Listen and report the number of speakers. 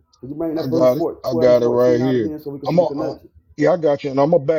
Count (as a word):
two